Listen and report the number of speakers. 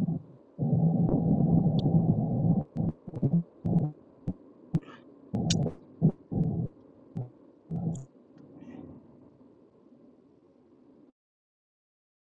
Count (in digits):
0